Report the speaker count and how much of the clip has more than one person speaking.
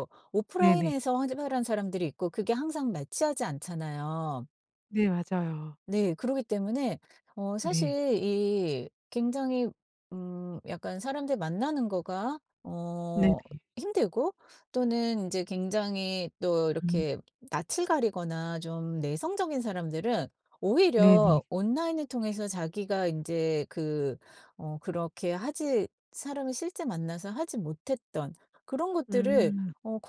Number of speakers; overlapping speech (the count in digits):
2, about 6%